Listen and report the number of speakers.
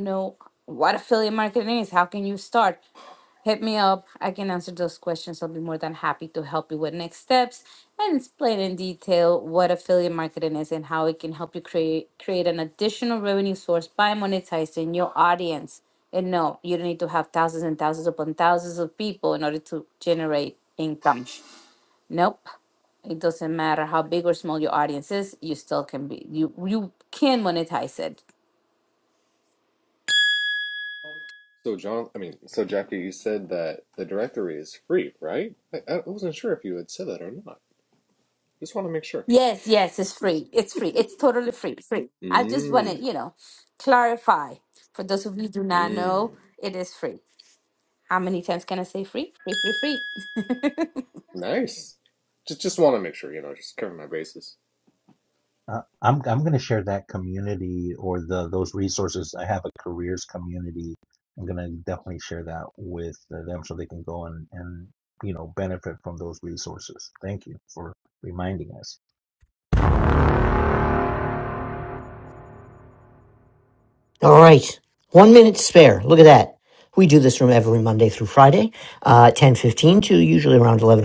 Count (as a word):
four